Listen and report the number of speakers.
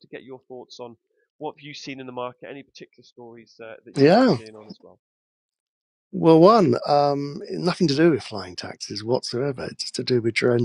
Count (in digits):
2